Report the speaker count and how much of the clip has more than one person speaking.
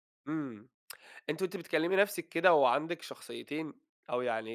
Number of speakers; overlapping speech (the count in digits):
1, no overlap